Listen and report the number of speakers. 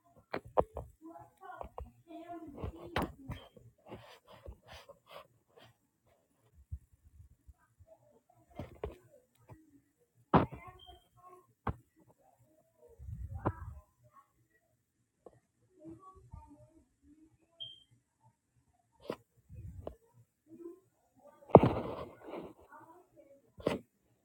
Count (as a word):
zero